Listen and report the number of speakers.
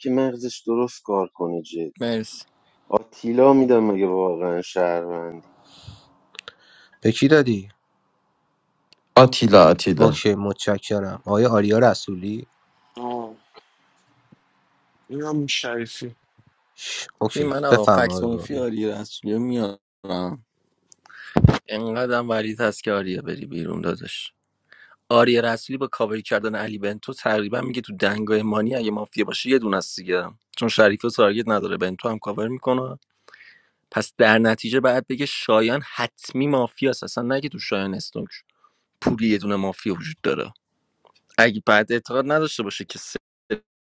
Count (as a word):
five